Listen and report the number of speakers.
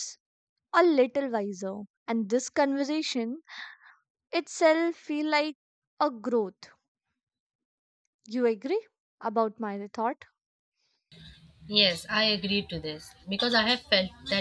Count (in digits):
2